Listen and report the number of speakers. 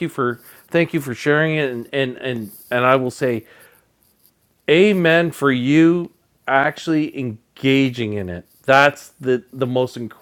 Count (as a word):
one